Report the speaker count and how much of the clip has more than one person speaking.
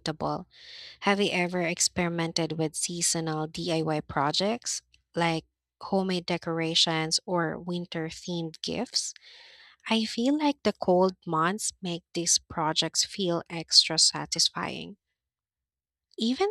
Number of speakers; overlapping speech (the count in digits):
1, no overlap